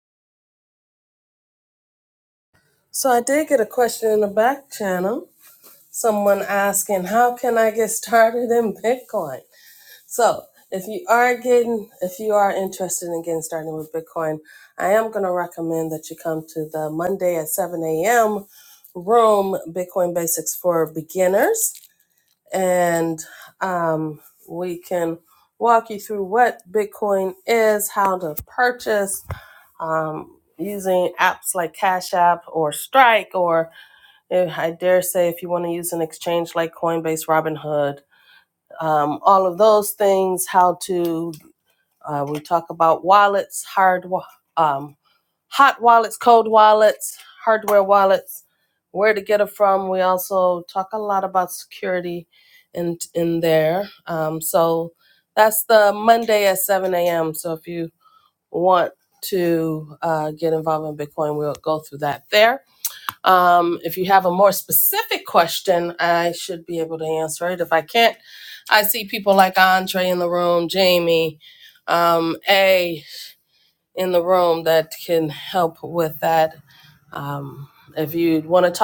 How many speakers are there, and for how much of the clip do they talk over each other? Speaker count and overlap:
1, no overlap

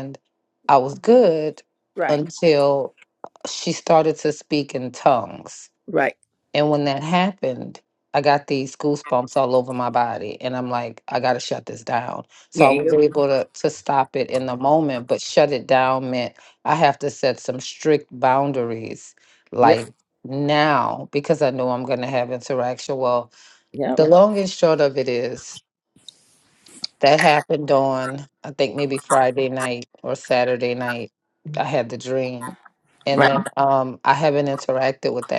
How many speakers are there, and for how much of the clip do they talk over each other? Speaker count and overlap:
2, about 3%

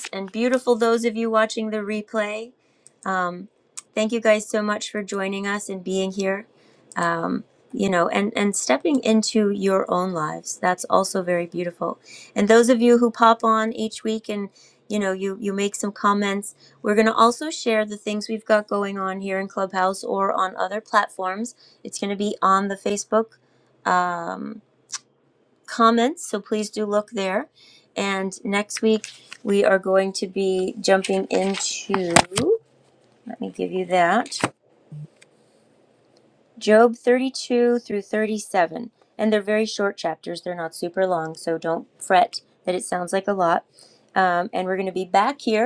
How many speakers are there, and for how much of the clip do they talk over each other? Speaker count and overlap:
1, no overlap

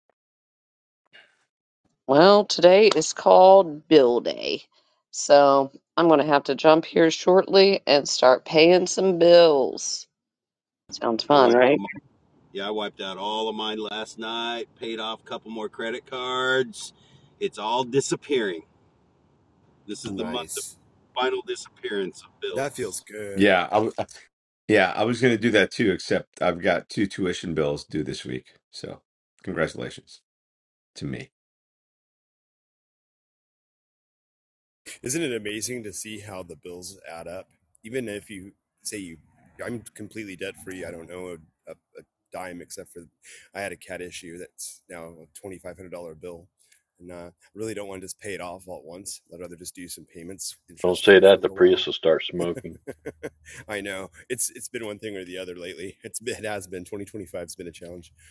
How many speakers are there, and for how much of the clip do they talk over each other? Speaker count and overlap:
5, about 4%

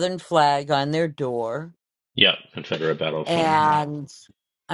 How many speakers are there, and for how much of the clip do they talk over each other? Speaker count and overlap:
2, about 8%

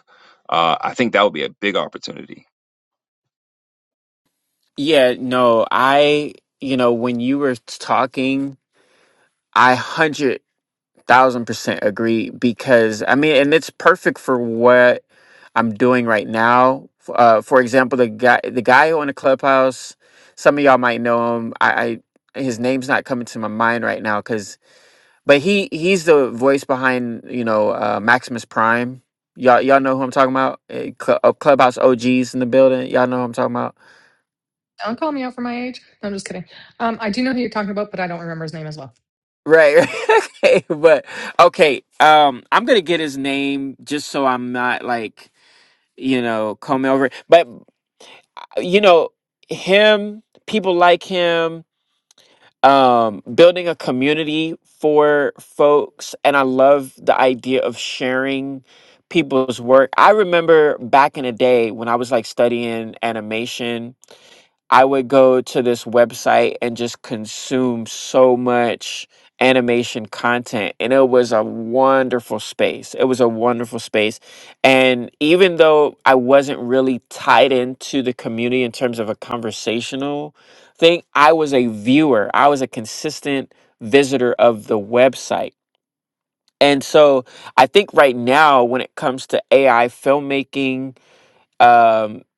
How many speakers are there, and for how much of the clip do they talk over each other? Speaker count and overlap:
3, no overlap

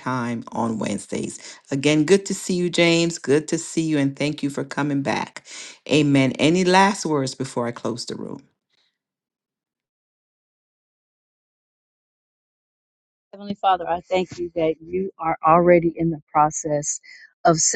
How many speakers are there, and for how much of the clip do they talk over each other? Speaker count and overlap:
2, no overlap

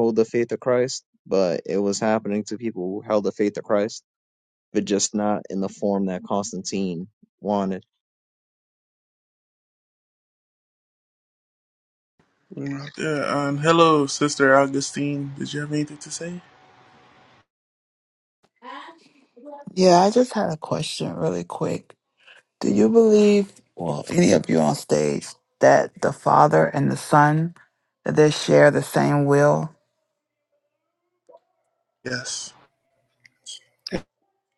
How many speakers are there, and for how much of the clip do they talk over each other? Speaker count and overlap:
3, no overlap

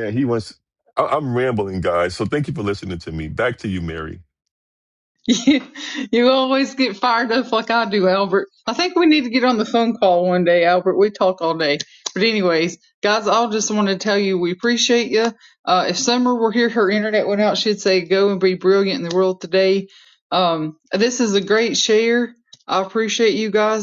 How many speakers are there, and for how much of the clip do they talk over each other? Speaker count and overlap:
2, no overlap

